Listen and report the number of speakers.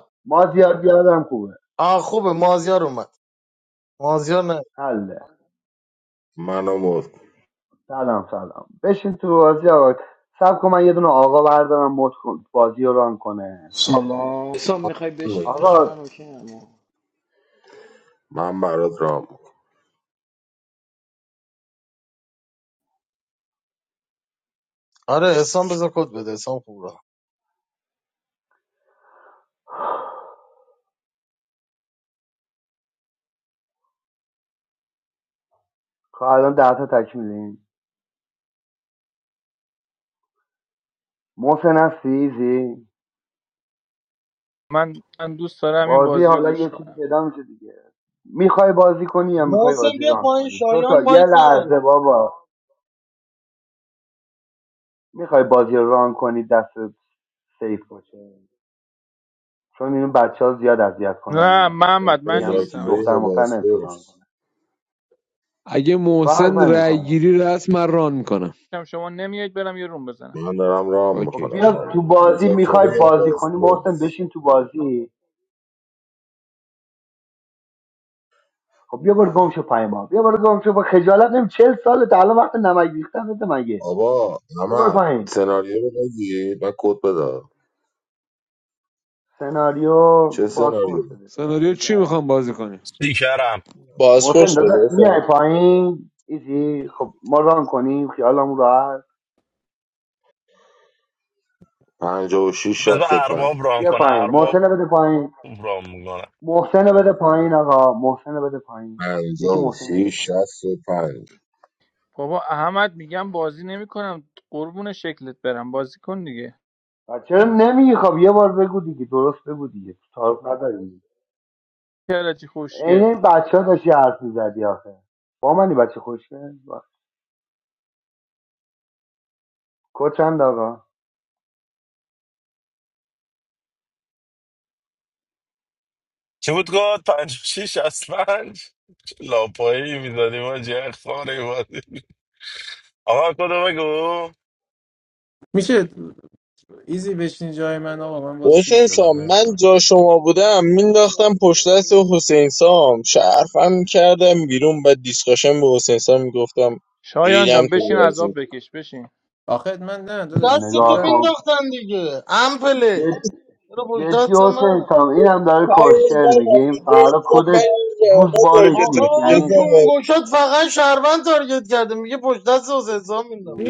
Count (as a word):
nine